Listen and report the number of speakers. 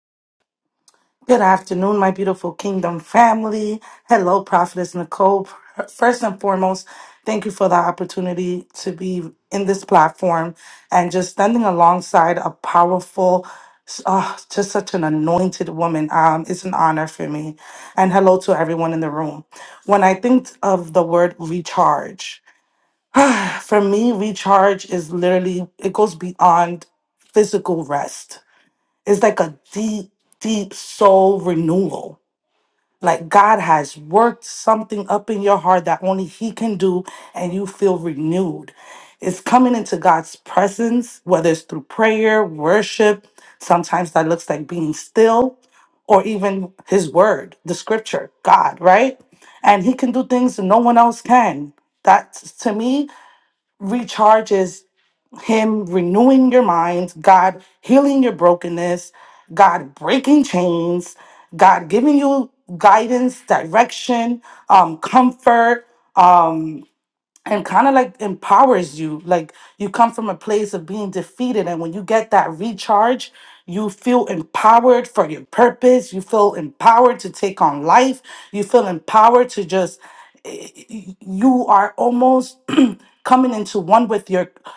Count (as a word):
one